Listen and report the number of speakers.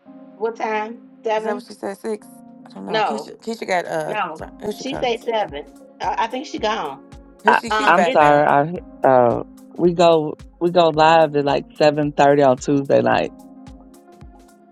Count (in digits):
3